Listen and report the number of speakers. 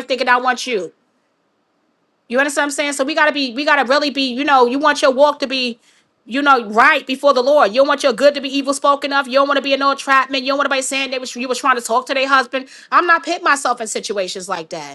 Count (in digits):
1